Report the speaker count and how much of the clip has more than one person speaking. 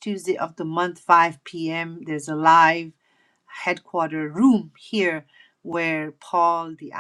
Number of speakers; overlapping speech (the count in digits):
1, no overlap